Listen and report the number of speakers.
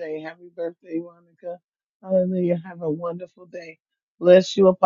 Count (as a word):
one